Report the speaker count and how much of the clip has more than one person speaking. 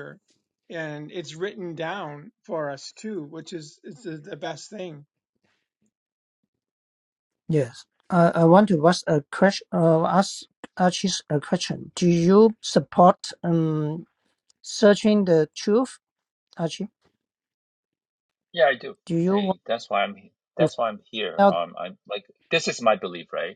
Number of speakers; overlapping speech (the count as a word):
three, about 2%